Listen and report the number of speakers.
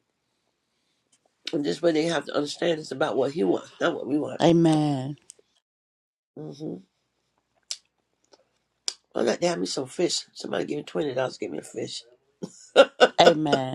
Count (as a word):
two